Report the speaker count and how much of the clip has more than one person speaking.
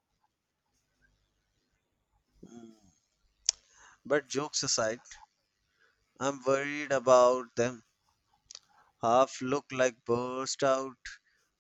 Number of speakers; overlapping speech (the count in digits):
1, no overlap